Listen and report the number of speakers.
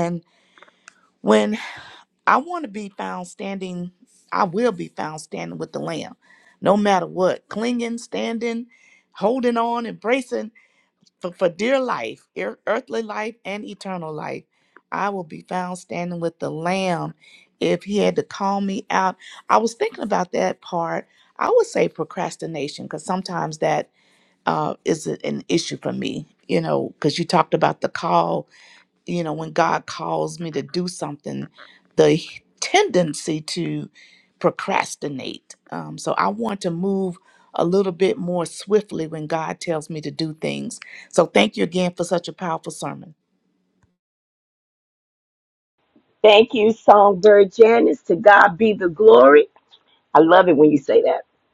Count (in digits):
2